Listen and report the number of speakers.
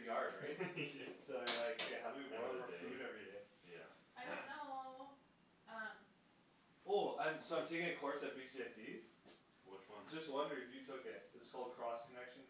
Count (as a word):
three